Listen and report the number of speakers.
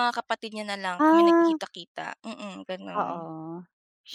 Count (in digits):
2